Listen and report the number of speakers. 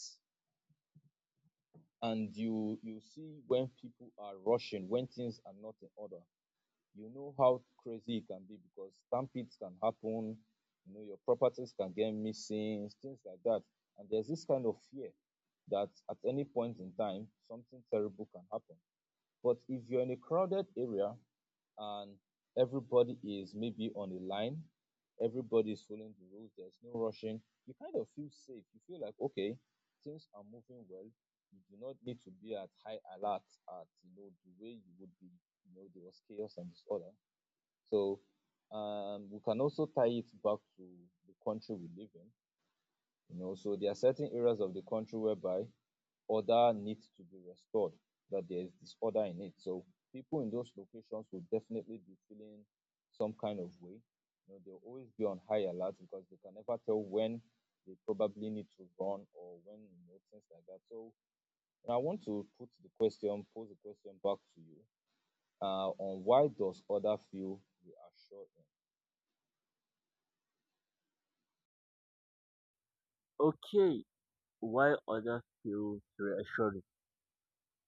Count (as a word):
two